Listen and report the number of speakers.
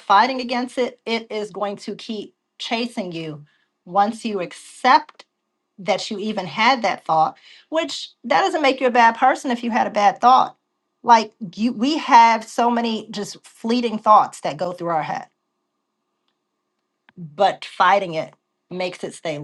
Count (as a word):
one